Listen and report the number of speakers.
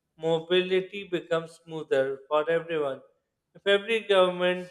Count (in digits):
1